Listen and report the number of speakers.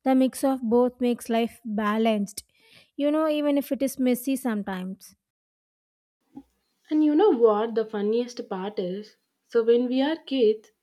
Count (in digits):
2